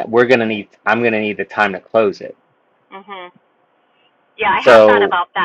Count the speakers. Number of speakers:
two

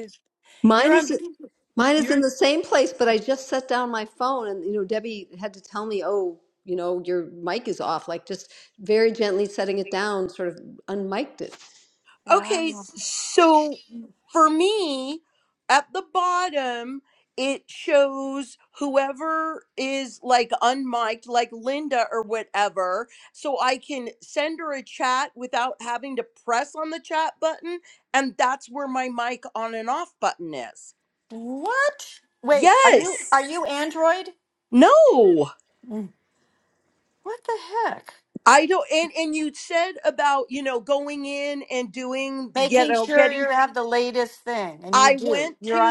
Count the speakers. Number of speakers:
three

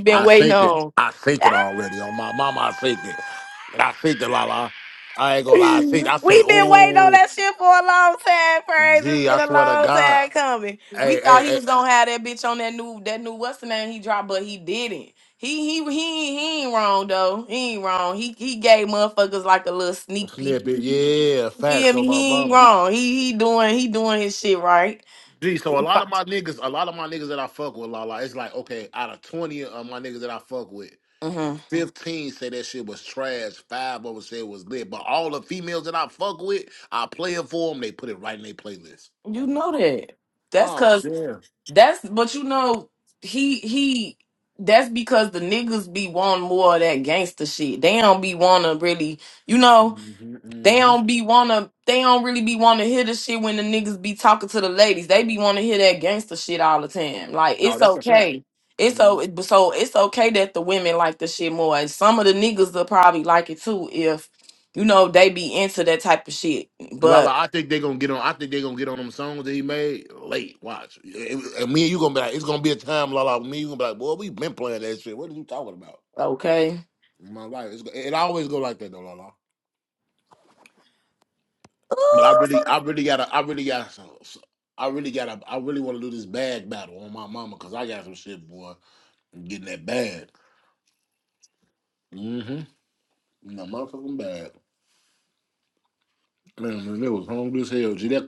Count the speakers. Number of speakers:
two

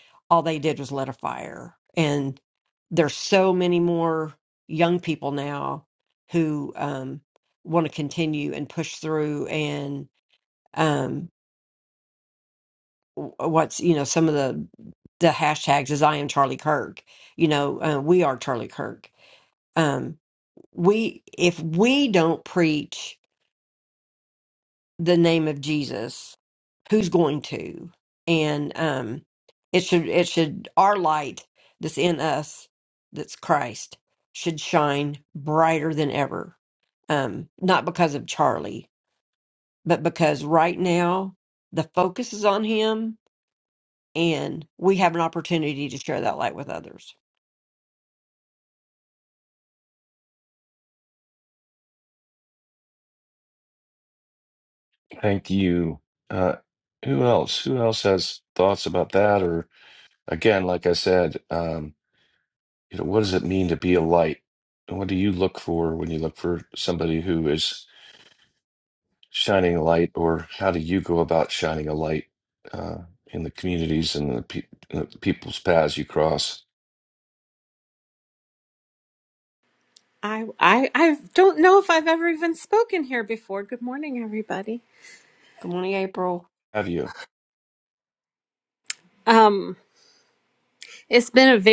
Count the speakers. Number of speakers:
three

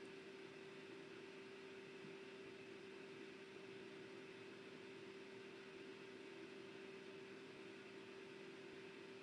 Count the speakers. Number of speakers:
zero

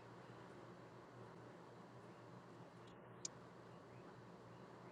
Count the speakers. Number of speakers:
zero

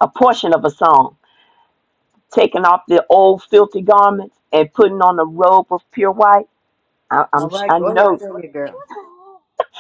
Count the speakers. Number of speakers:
two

